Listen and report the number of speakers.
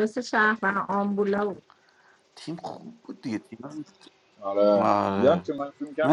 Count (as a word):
three